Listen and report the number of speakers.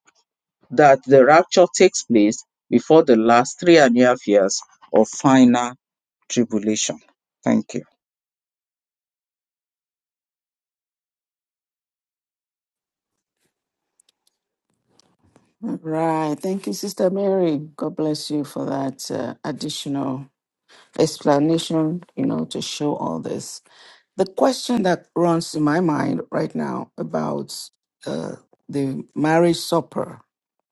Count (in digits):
2